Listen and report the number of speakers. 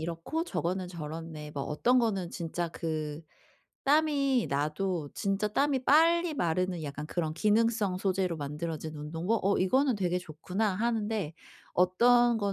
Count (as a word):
one